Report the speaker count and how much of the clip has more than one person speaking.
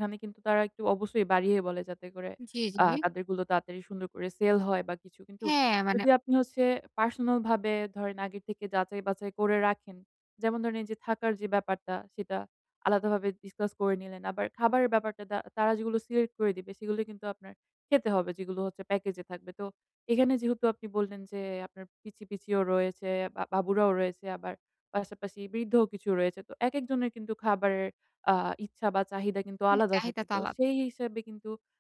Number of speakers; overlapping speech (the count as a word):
two, about 4%